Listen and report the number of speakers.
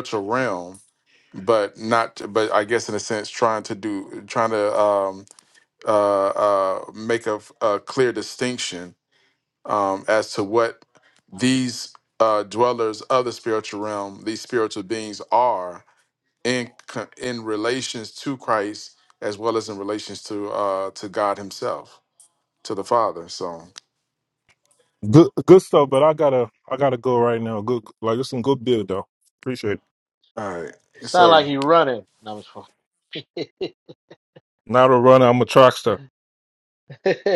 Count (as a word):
three